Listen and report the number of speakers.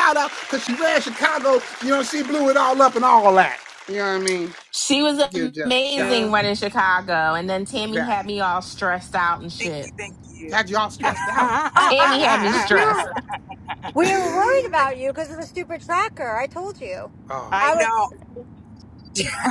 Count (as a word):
four